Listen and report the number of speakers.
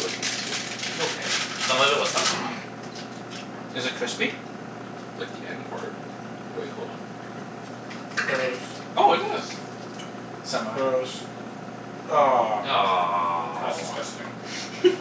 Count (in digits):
4